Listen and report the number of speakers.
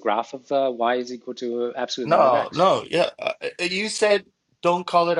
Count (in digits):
2